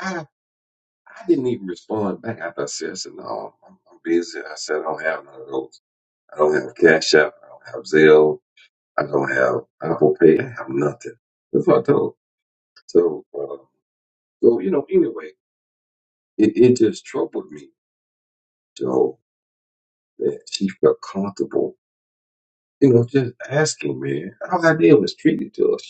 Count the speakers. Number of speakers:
1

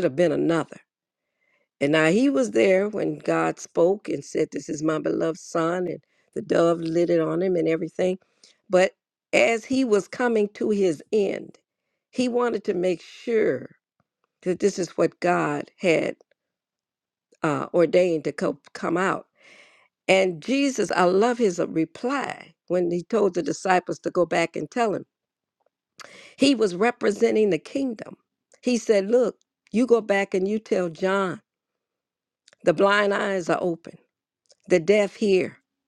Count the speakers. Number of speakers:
1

